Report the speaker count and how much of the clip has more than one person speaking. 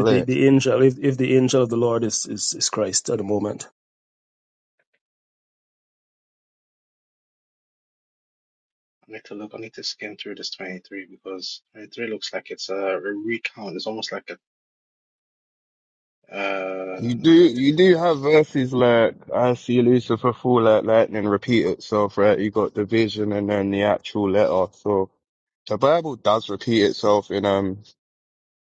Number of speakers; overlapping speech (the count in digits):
3, about 2%